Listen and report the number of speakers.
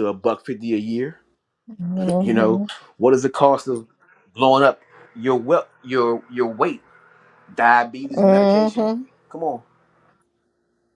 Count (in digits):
2